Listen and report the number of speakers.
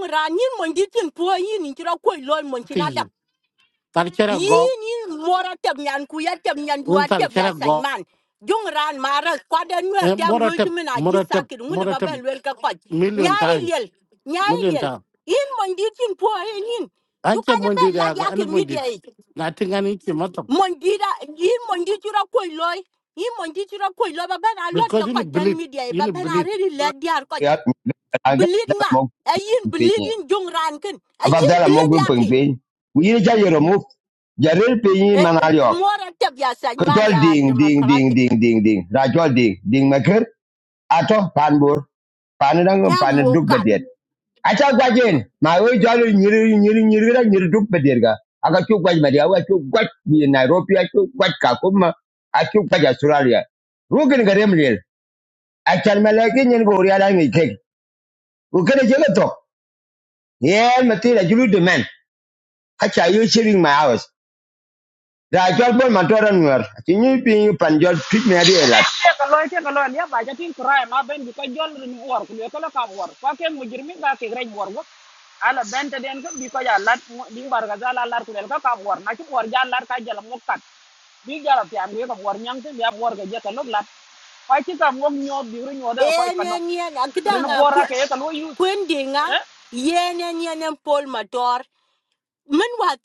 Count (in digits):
4